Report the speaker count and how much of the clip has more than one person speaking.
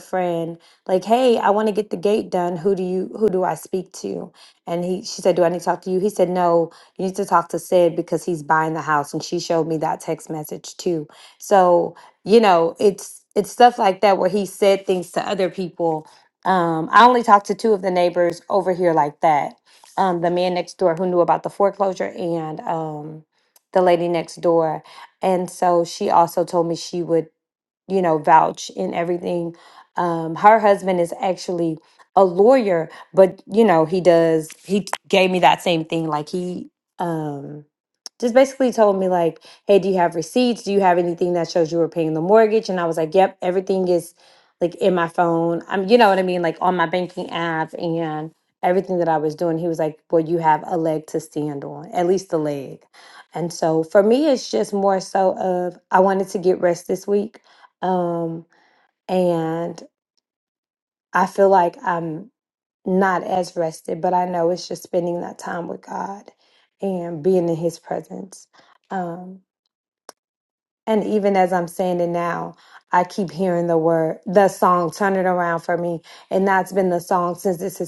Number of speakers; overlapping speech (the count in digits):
1, no overlap